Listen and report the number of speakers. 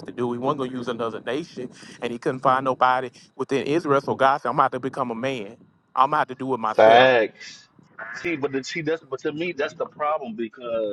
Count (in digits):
2